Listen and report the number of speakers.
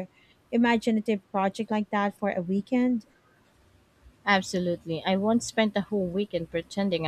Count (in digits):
2